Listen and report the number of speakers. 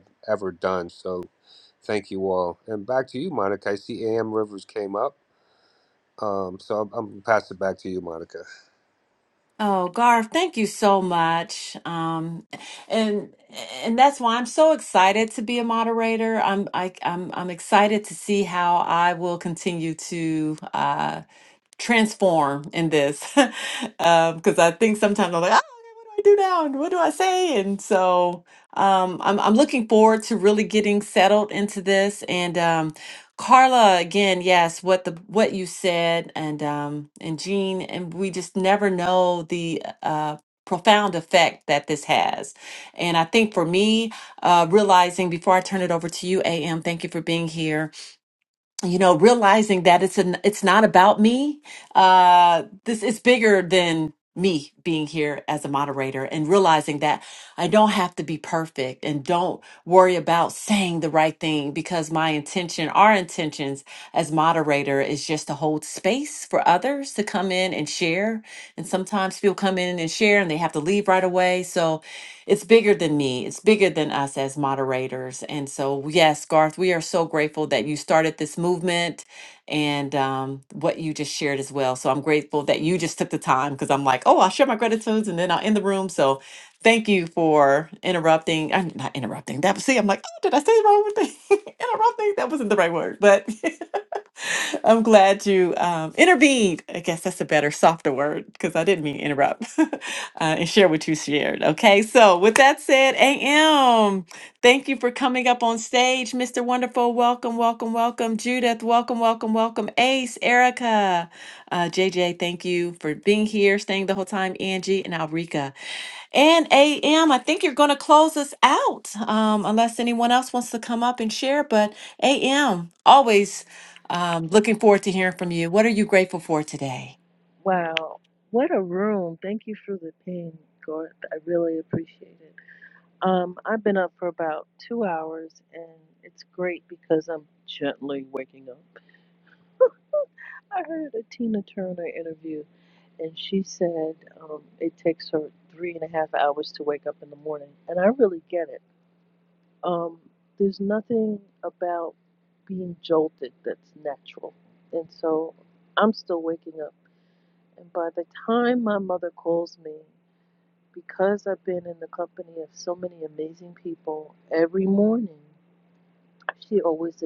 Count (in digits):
3